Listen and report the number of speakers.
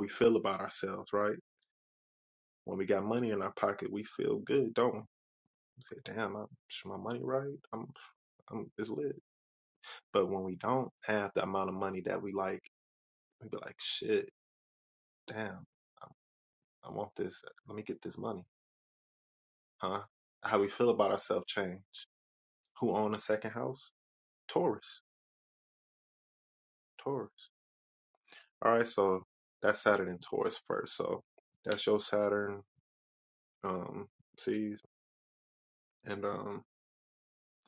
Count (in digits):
1